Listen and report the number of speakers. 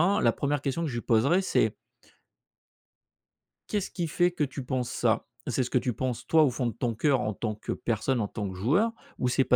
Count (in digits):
1